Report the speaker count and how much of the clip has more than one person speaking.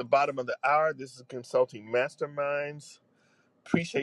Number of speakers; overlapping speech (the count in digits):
1, no overlap